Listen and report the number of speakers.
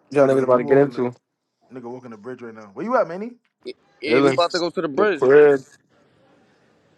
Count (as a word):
three